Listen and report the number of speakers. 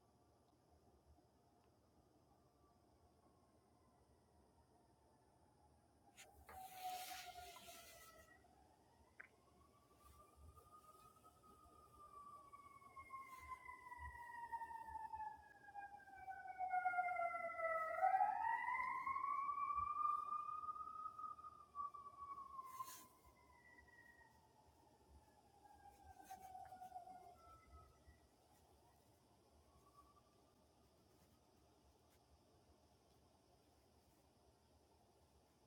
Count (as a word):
zero